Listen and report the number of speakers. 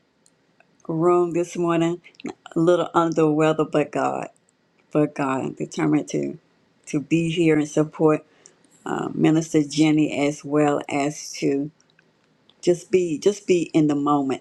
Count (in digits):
1